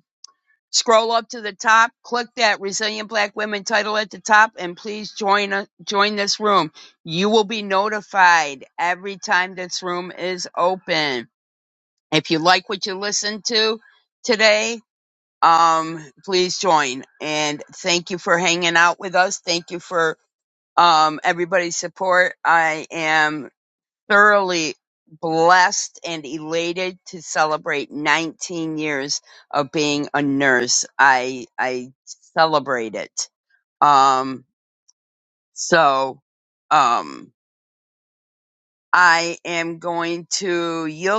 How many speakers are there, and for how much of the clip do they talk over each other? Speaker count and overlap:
1, no overlap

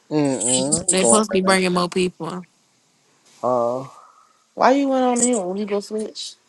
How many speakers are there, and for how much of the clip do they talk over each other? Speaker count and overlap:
3, about 11%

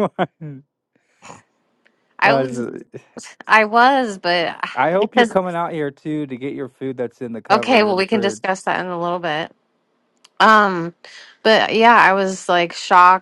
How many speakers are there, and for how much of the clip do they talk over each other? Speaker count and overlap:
2, about 14%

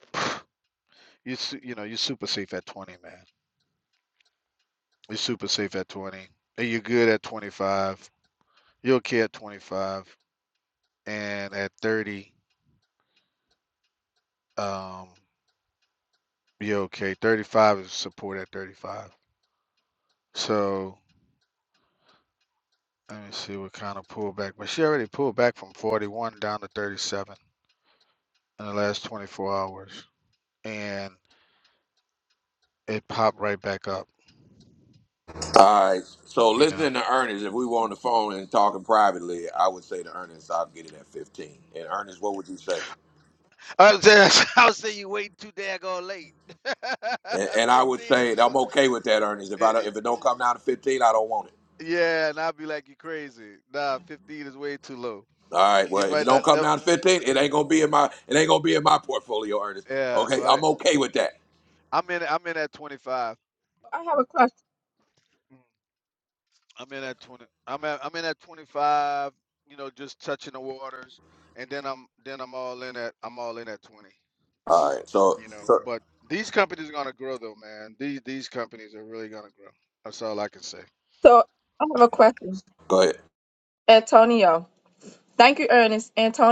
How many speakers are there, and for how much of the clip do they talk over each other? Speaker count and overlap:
3, about 3%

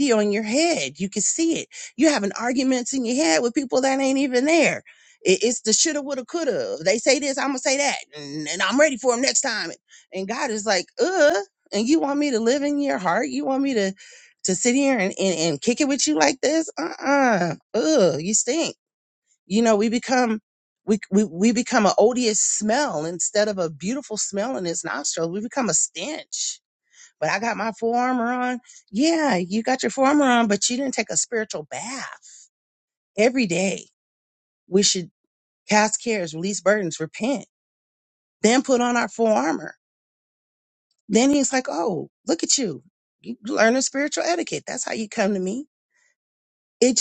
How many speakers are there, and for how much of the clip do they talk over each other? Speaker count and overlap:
1, no overlap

